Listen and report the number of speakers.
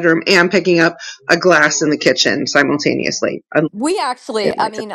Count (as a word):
two